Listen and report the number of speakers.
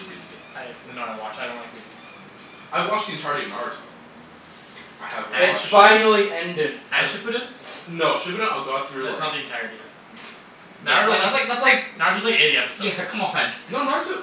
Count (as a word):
four